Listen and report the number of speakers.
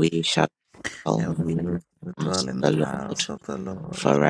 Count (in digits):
2